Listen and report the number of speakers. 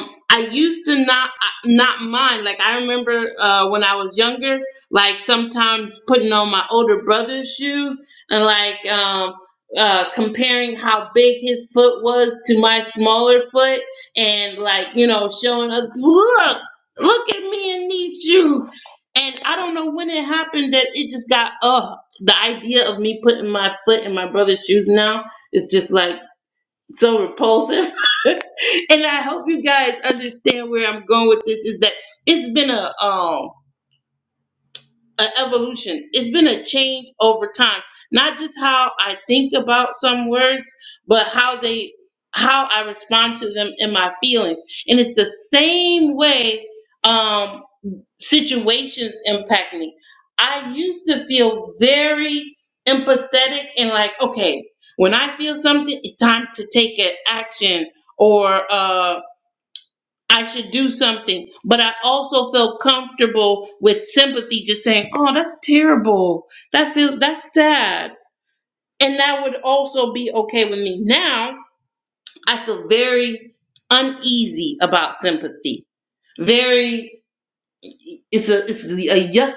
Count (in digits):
1